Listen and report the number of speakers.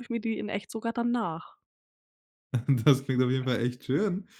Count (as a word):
two